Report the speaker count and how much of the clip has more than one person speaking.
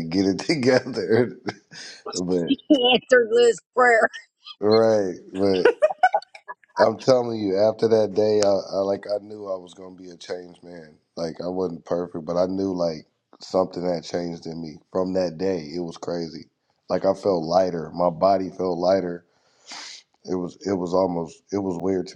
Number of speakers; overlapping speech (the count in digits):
2, no overlap